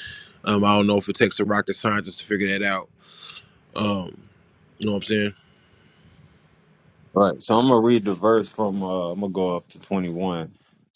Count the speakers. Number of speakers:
2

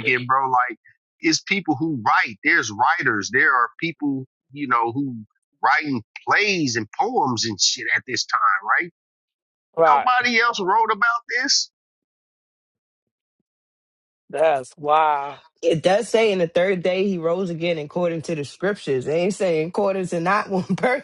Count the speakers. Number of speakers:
3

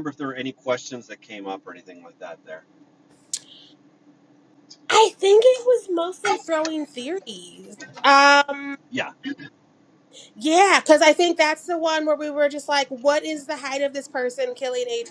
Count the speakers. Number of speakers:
2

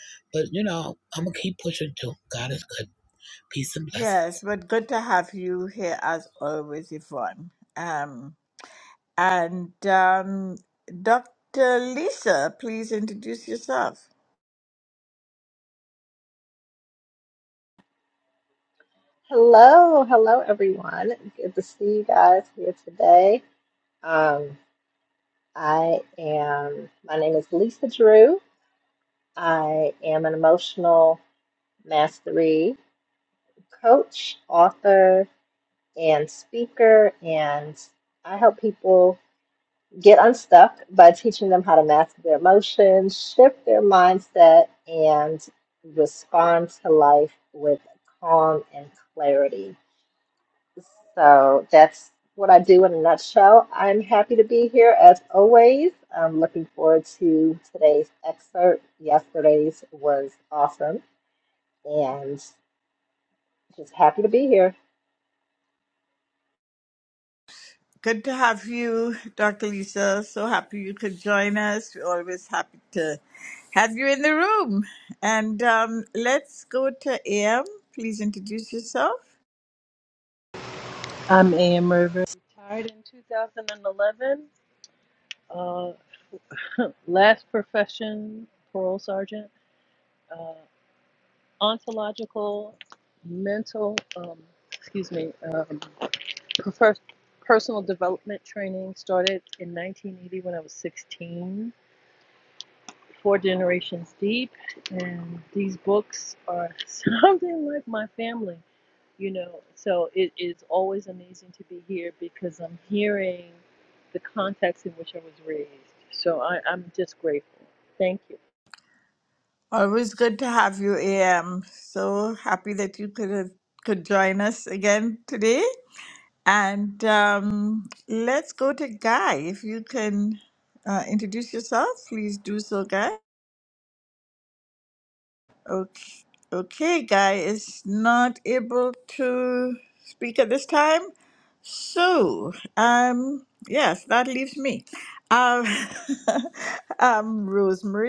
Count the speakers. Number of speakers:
4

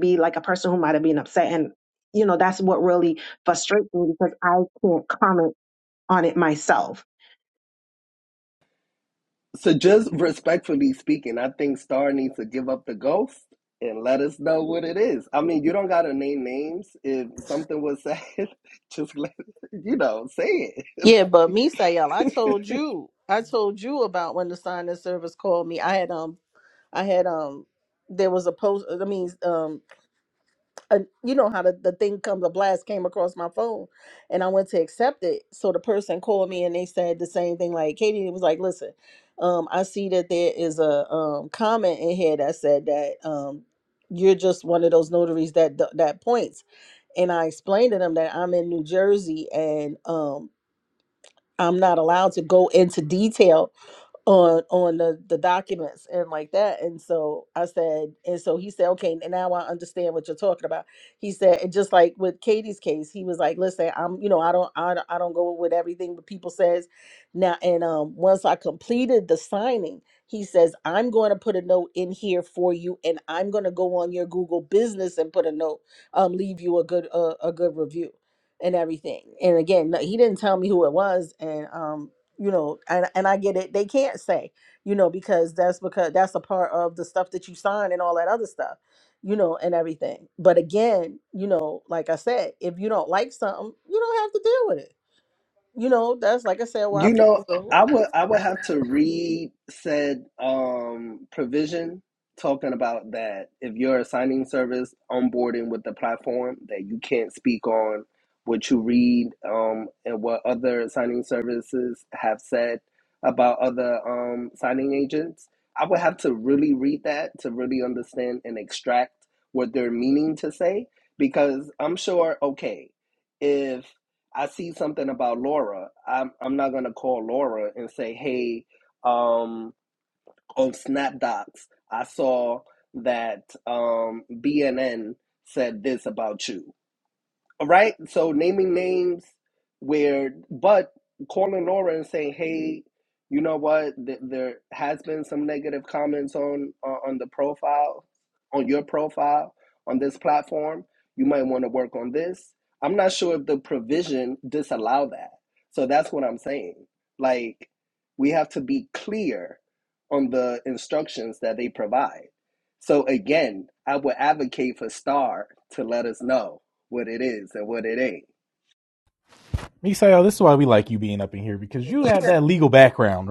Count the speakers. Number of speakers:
4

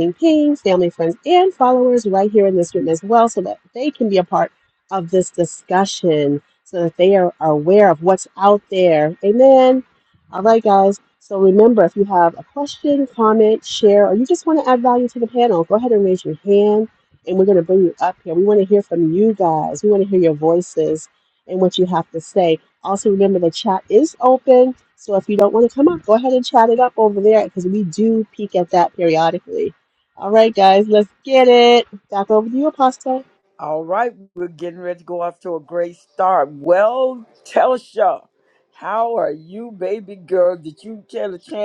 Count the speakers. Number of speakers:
2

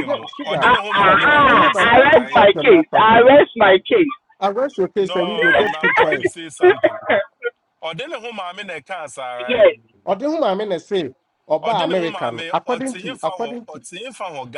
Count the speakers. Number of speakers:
3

